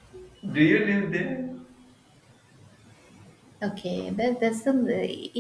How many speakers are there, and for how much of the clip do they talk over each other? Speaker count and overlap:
two, no overlap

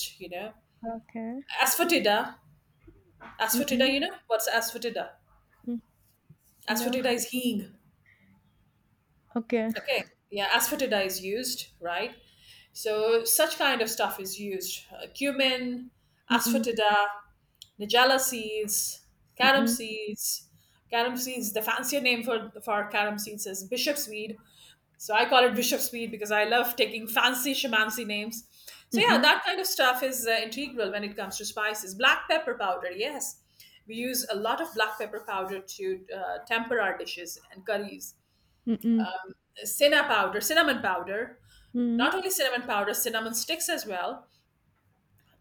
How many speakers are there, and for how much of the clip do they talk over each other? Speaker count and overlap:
two, about 4%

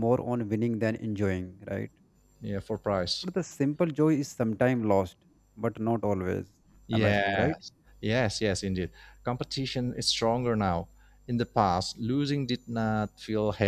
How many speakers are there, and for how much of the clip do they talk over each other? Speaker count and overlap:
two, about 5%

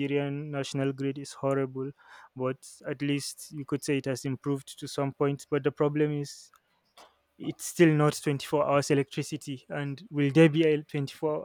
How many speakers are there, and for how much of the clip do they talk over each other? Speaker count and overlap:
one, no overlap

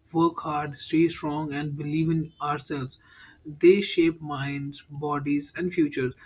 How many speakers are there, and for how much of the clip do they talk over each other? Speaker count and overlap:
one, no overlap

